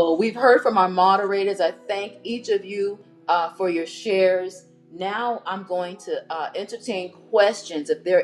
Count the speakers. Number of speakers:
1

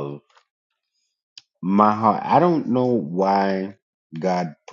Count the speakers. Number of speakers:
1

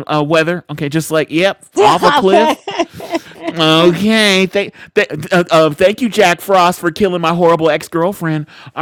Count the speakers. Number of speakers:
2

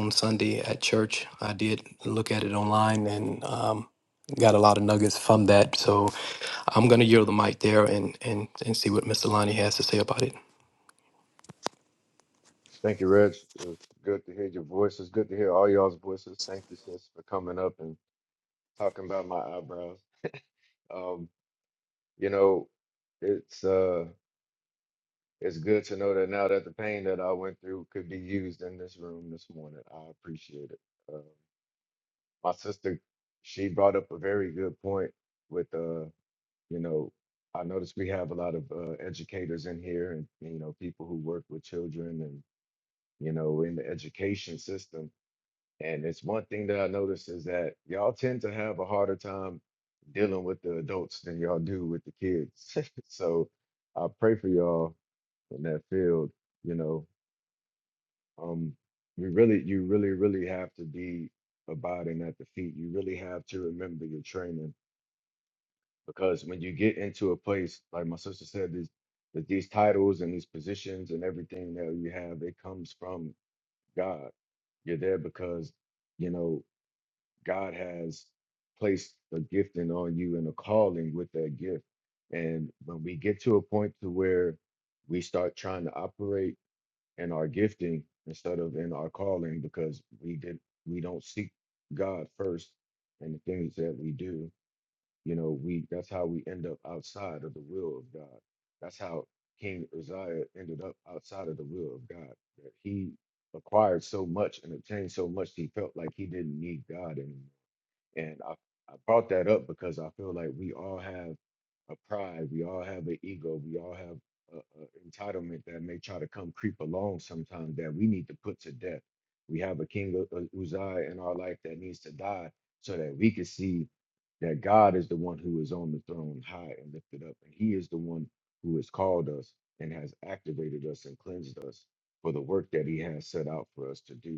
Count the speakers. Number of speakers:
2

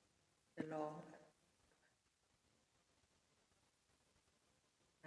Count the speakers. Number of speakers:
0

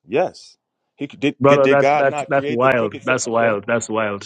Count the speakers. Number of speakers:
2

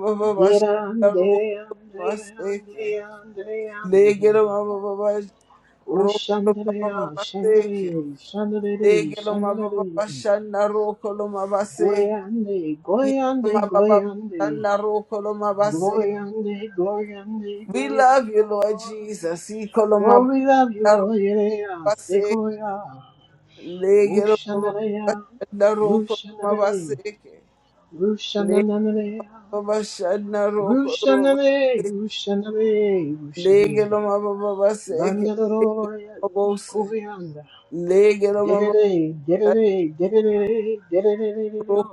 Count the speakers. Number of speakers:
2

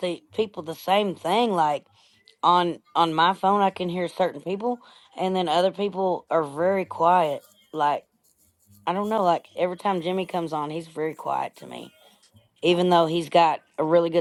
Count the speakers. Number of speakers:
1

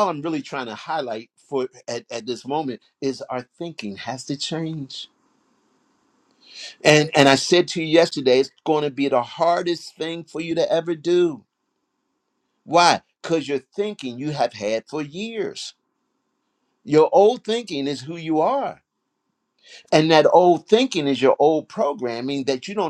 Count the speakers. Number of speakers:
1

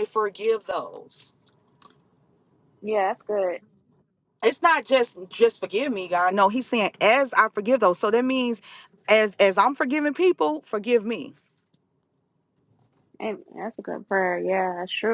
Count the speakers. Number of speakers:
2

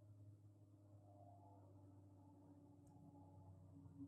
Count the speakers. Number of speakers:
0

